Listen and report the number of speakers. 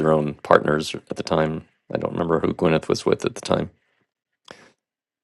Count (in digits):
1